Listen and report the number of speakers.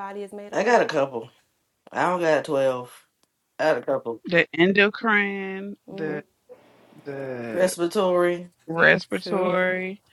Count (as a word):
three